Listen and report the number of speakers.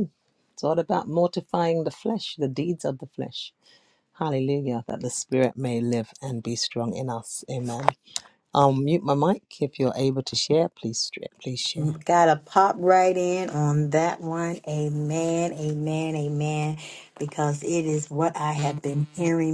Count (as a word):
two